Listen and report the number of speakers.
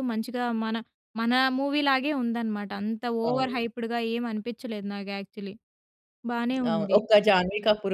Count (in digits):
2